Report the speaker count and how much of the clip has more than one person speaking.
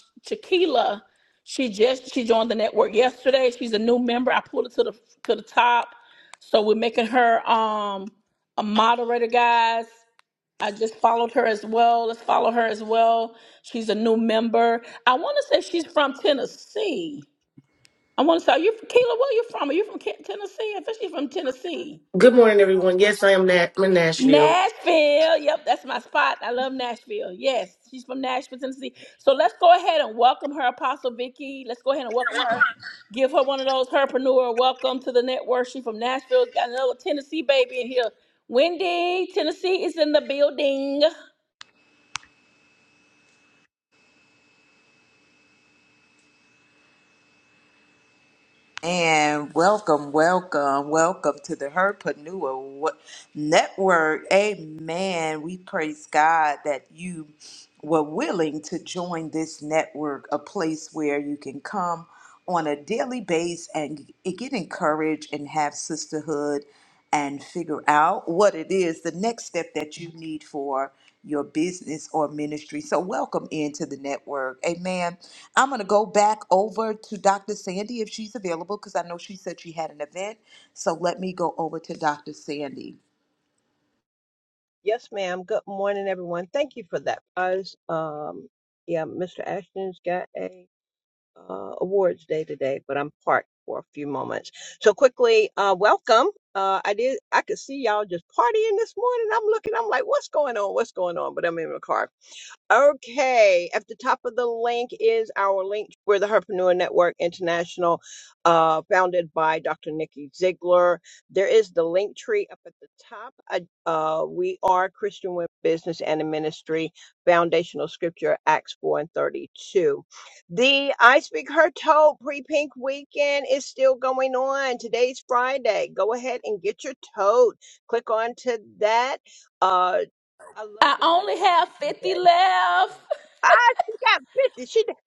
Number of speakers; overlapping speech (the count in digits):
4, about 1%